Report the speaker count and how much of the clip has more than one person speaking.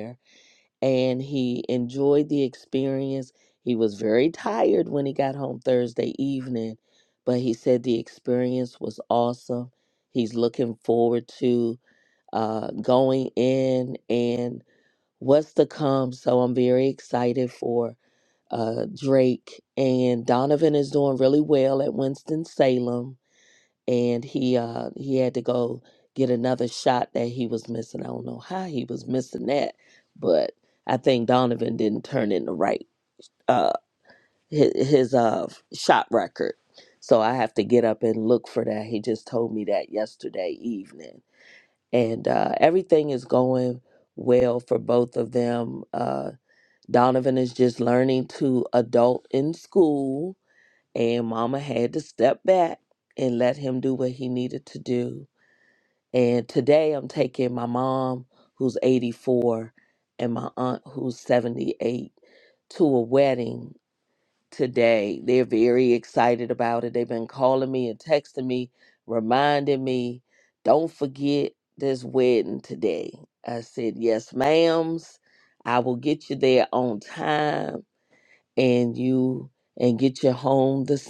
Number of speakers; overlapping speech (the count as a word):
one, no overlap